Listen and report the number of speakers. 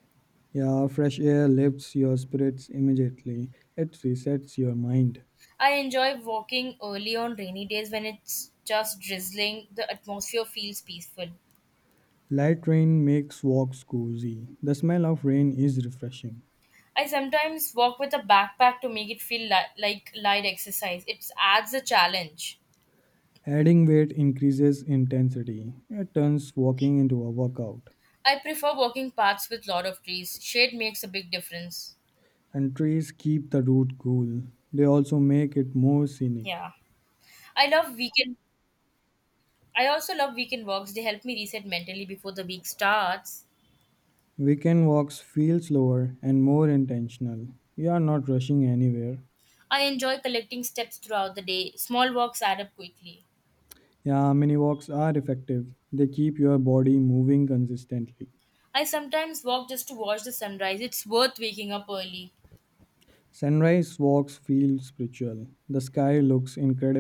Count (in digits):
2